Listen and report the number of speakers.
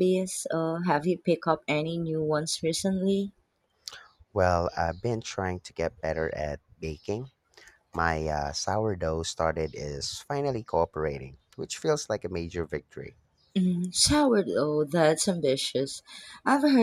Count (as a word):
two